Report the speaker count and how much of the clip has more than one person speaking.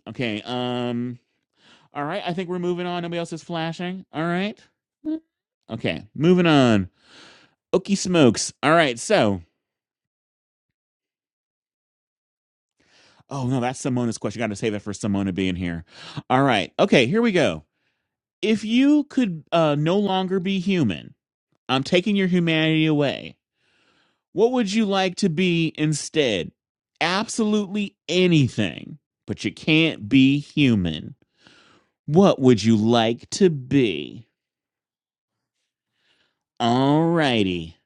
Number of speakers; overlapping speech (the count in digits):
1, no overlap